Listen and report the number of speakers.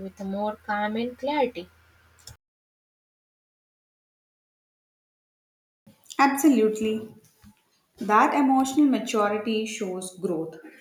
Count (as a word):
two